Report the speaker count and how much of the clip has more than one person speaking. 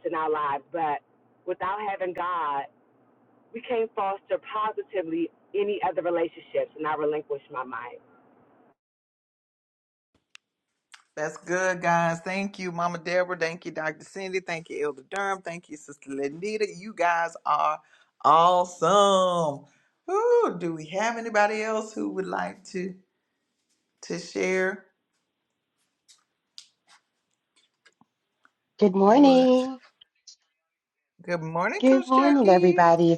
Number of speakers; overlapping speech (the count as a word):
three, about 5%